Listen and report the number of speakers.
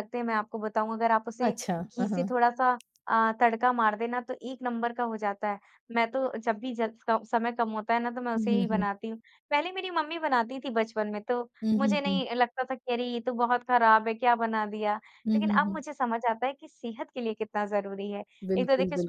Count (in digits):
2